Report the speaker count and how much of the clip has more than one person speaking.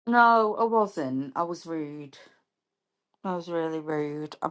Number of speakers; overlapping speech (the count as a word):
one, no overlap